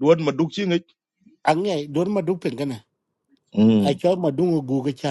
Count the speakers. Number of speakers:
2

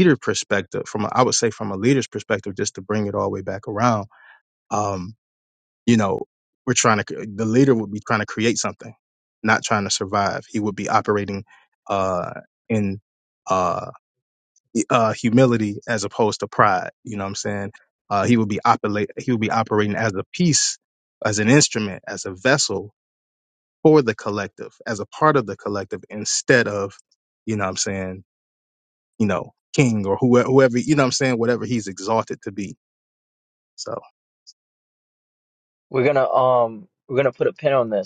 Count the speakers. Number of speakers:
2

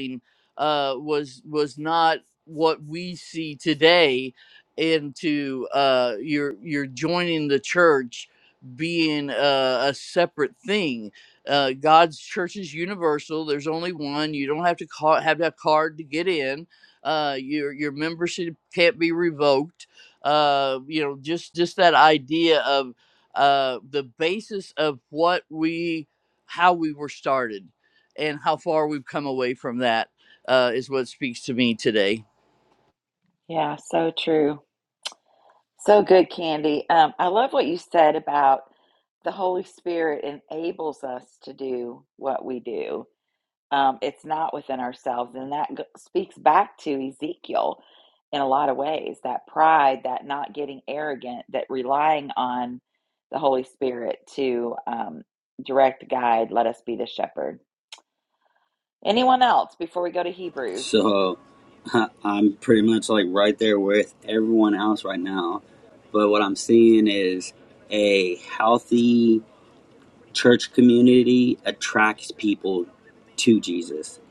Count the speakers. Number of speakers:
3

